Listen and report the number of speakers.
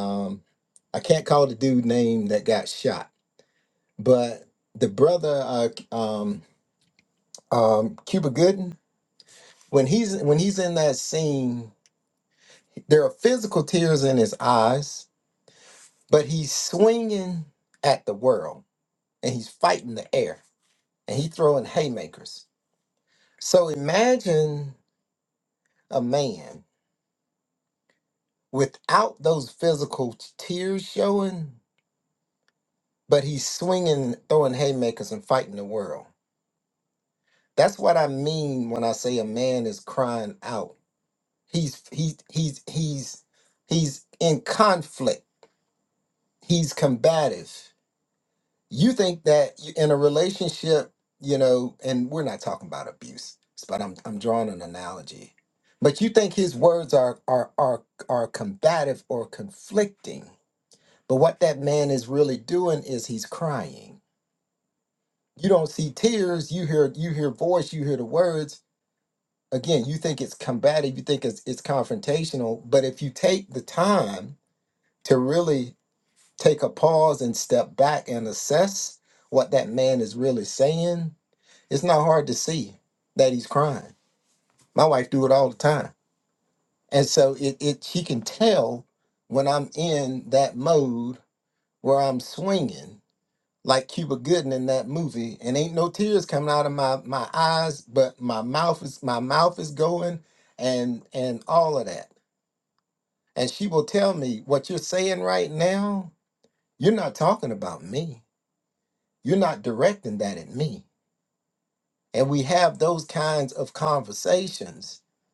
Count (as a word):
one